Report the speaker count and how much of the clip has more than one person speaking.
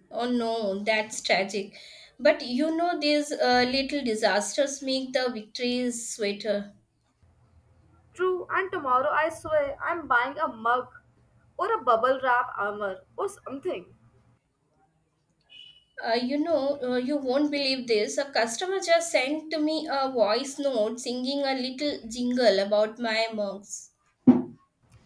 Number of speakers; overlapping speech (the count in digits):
2, no overlap